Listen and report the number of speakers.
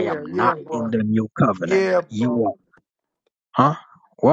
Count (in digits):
2